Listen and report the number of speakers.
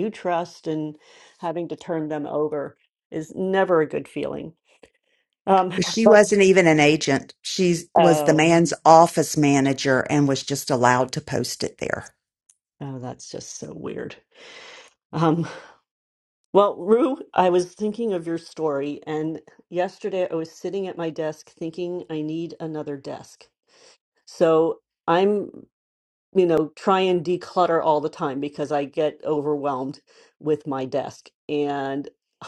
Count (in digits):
2